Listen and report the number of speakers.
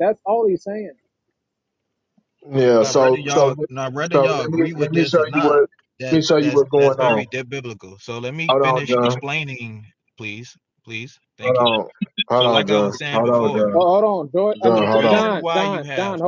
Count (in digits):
3